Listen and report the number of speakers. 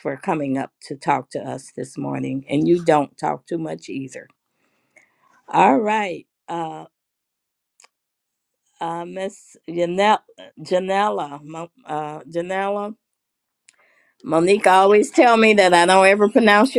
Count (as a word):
one